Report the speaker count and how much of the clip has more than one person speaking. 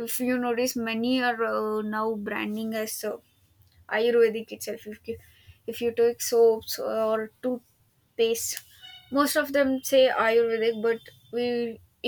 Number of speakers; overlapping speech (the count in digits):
1, no overlap